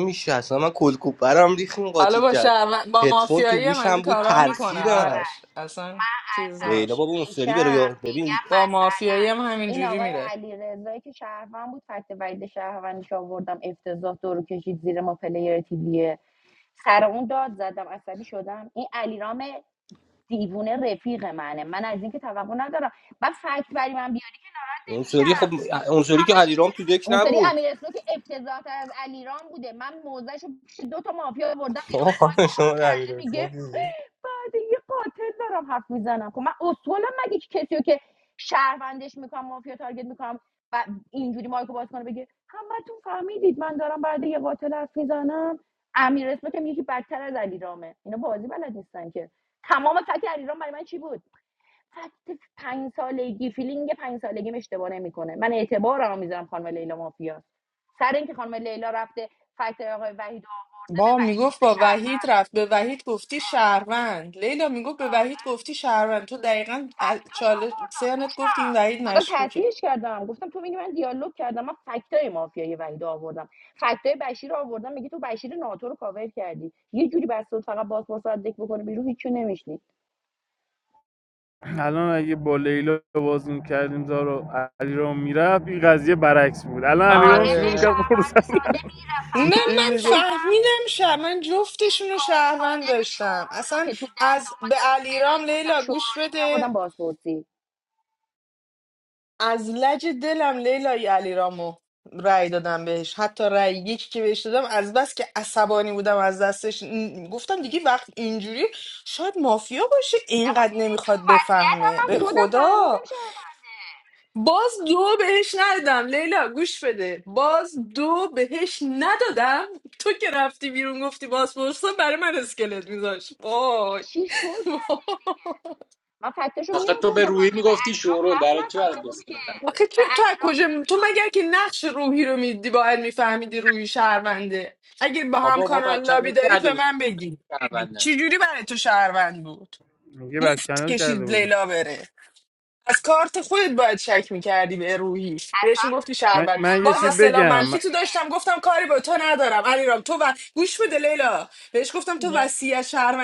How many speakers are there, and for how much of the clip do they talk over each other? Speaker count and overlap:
five, about 21%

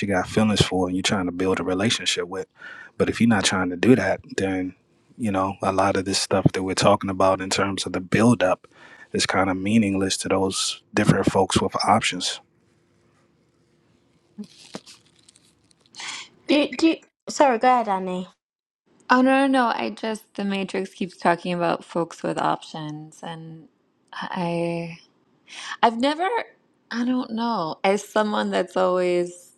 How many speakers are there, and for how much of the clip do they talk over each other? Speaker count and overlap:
three, no overlap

